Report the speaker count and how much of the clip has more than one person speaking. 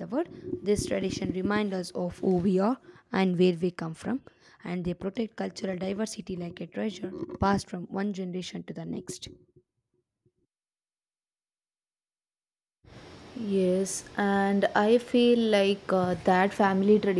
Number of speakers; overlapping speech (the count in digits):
2, no overlap